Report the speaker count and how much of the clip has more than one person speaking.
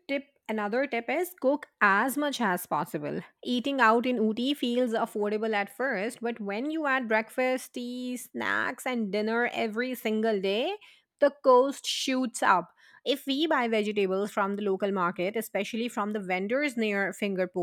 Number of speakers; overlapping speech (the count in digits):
1, no overlap